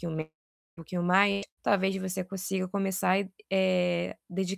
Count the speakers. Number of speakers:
1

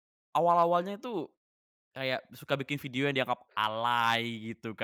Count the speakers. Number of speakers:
1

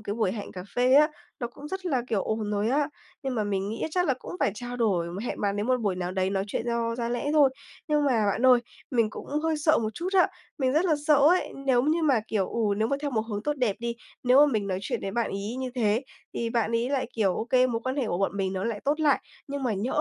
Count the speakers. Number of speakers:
1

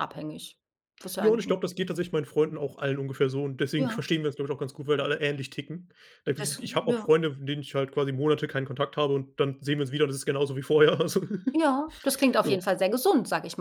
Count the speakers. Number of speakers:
2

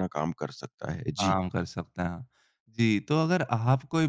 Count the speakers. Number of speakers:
2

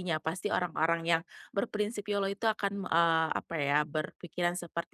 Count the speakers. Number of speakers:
1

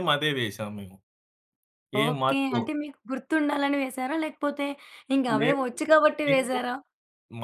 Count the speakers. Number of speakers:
2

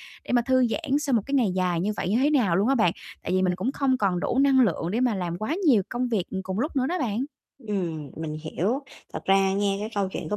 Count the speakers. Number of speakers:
2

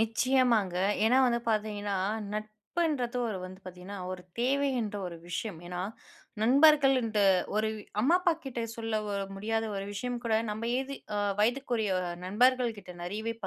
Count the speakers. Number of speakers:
1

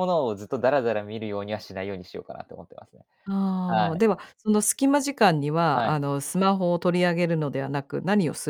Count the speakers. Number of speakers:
2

